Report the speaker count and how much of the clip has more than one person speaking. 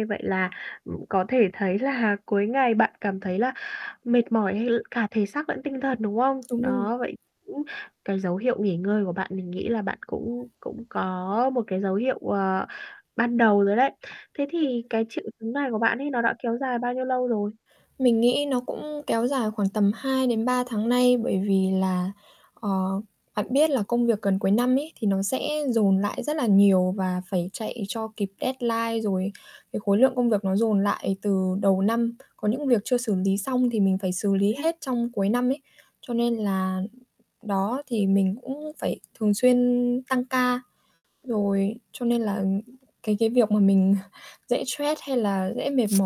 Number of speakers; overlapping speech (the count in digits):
2, about 1%